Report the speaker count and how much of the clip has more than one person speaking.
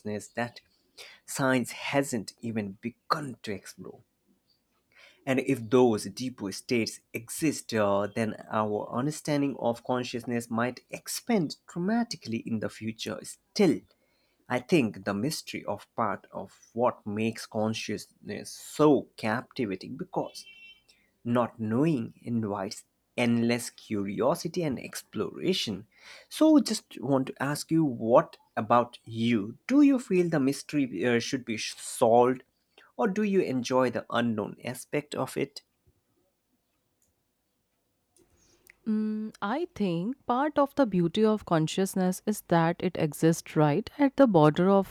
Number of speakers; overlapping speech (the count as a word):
two, no overlap